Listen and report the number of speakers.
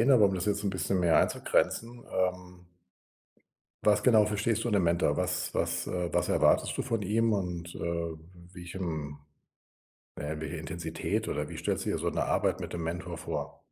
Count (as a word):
one